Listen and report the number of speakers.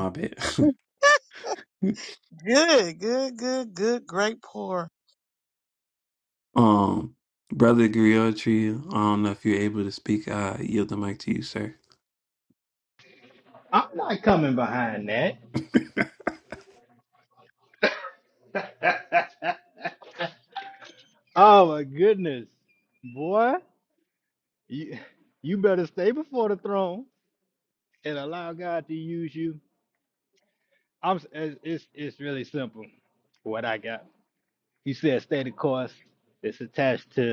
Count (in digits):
3